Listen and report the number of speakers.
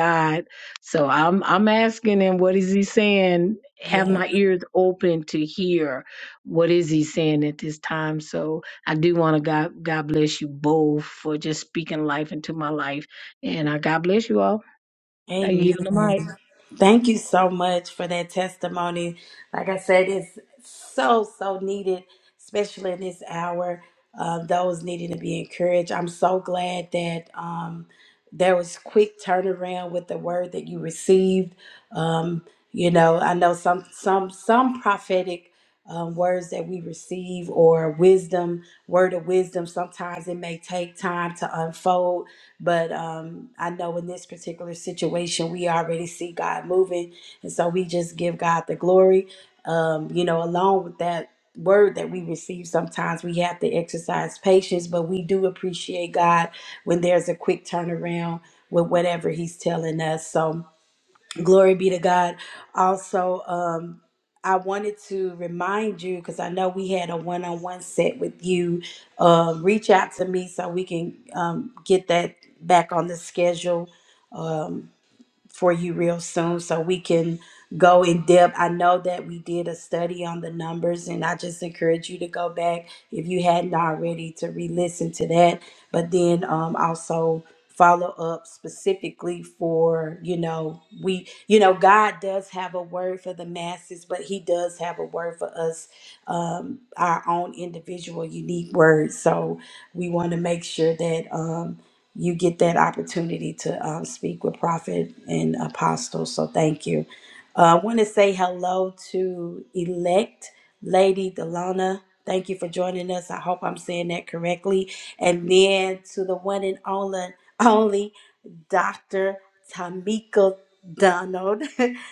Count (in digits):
2